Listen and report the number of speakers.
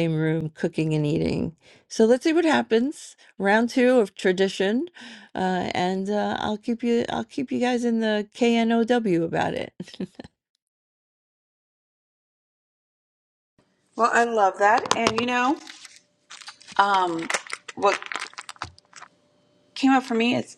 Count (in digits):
2